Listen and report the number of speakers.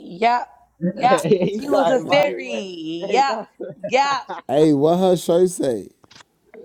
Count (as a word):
three